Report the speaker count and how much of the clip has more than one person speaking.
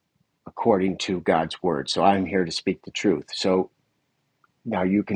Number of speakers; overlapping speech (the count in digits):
1, no overlap